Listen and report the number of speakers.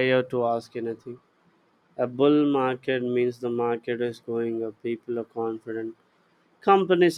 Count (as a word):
one